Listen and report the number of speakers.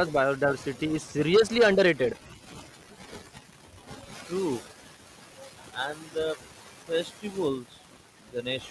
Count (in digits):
2